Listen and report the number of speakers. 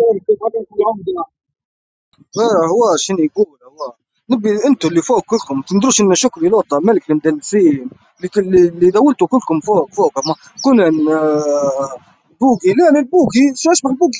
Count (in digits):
2